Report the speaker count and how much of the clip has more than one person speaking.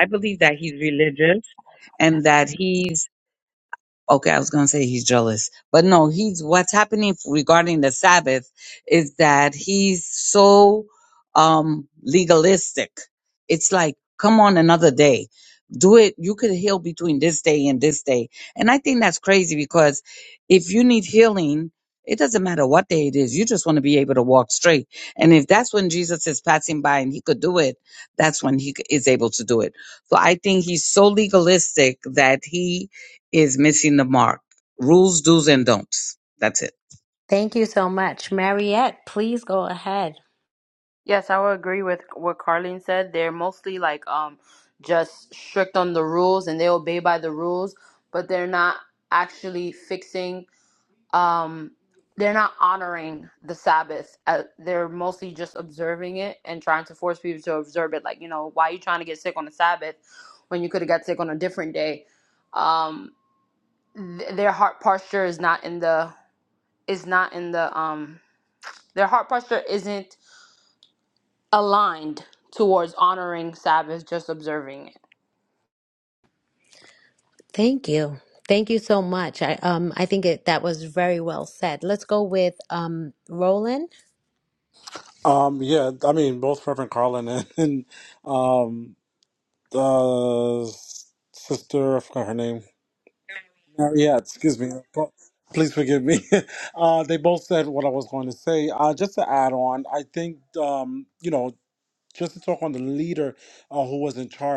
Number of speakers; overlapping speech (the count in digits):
4, no overlap